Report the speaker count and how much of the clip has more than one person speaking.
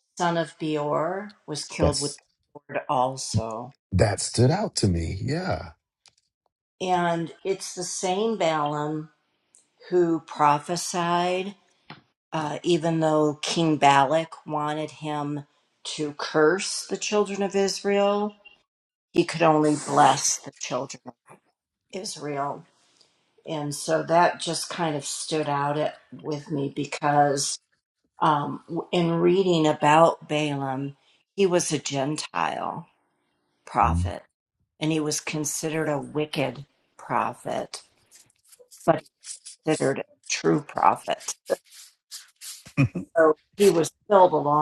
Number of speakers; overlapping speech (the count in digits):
2, about 1%